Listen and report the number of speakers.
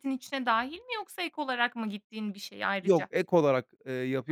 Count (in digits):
2